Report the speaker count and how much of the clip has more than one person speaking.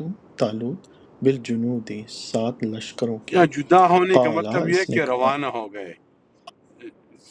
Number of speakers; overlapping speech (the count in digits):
2, about 19%